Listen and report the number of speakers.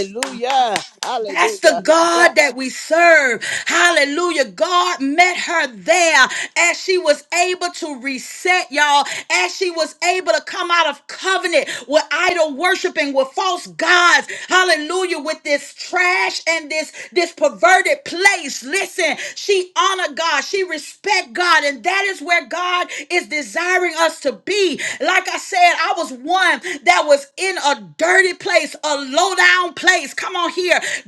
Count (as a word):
two